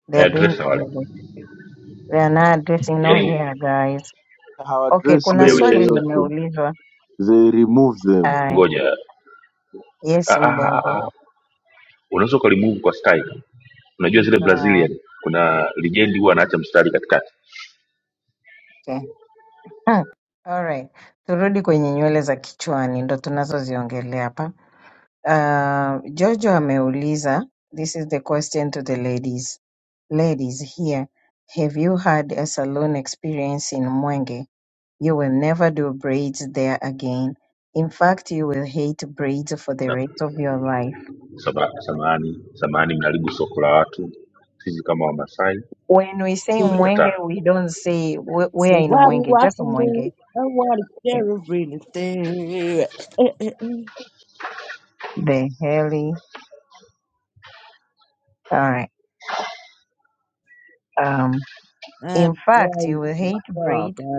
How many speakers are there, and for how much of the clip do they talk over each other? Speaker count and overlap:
four, about 12%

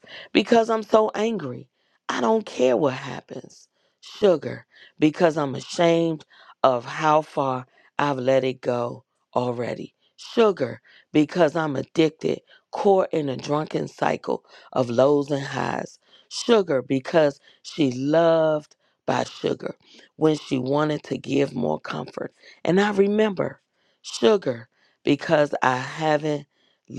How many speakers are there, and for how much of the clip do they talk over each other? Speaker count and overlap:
one, no overlap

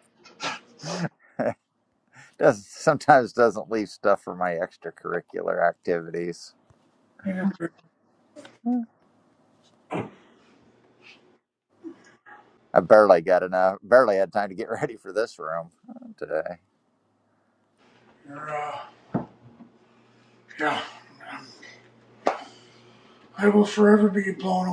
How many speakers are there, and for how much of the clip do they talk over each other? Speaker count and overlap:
two, no overlap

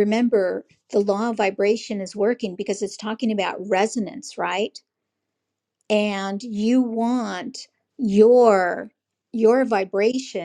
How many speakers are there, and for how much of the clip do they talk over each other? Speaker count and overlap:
one, no overlap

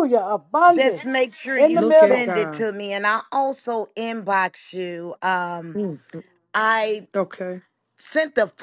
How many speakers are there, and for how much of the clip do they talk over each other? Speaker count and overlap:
three, about 15%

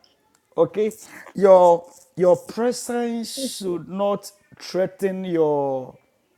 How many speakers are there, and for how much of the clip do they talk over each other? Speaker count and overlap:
one, no overlap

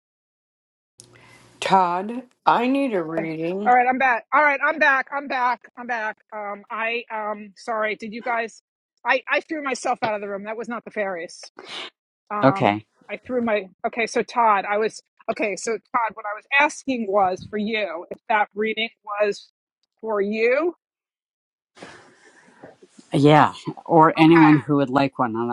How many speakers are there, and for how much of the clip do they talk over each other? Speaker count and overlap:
three, about 3%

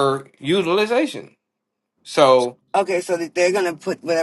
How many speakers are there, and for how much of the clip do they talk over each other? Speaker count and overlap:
two, no overlap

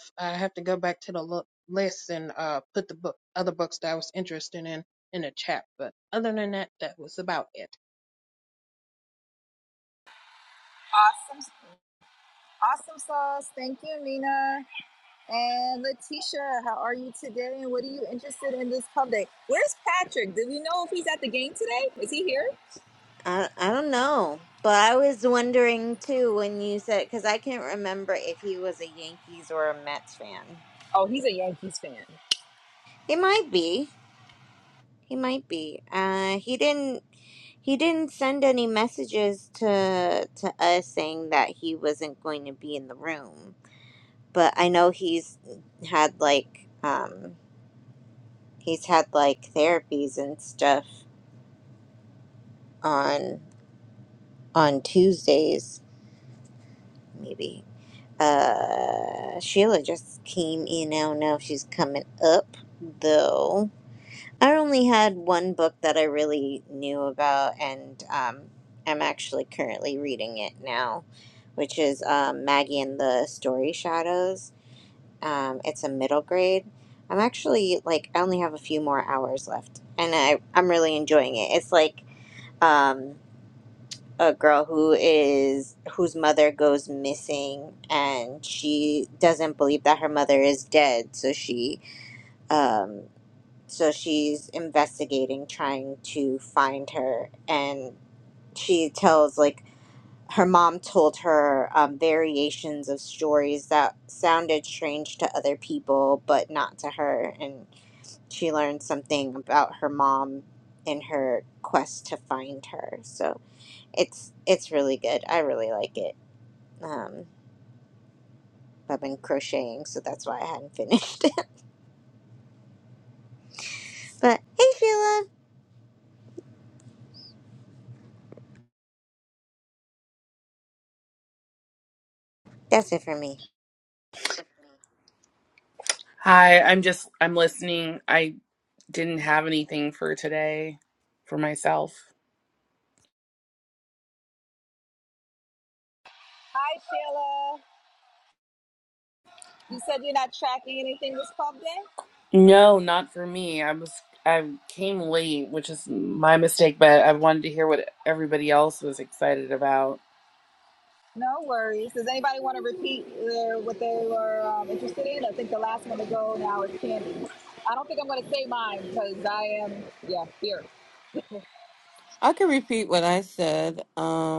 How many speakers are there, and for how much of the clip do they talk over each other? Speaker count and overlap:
five, no overlap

